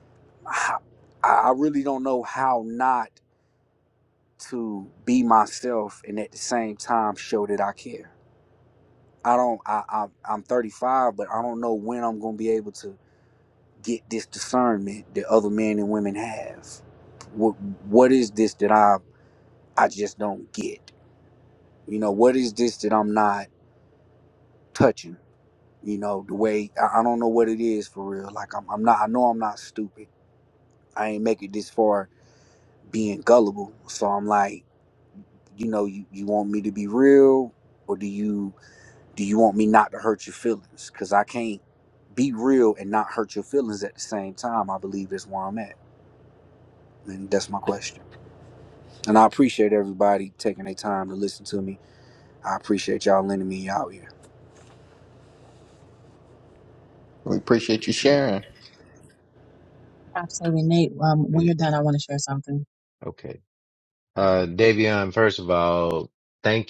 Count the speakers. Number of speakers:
four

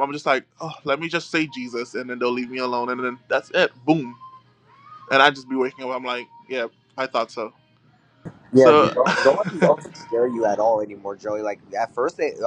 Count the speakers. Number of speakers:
two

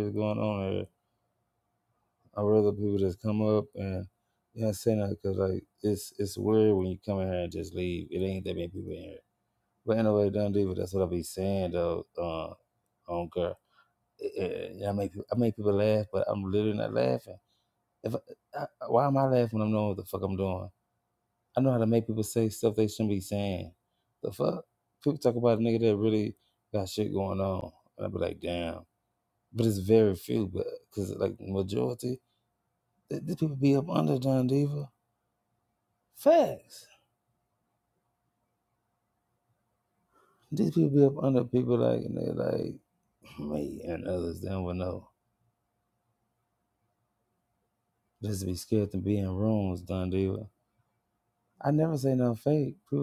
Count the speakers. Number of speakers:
one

